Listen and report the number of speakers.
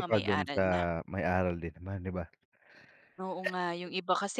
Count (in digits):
2